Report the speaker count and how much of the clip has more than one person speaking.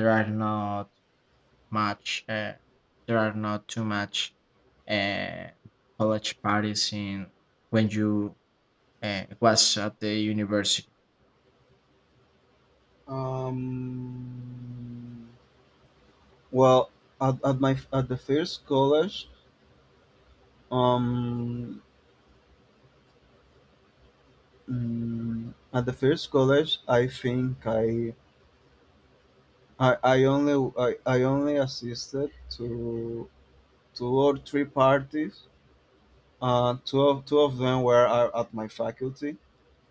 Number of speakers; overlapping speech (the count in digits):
2, no overlap